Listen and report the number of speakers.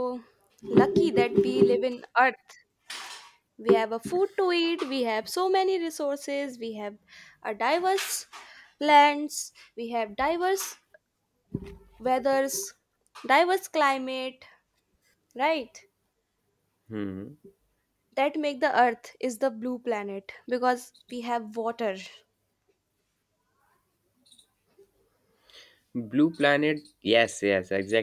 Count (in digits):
2